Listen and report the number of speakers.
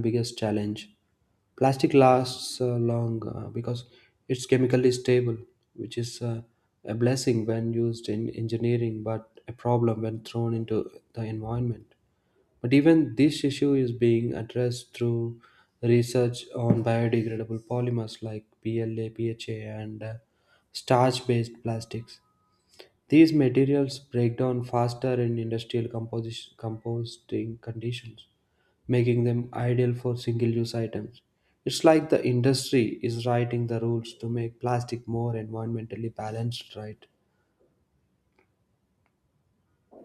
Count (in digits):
1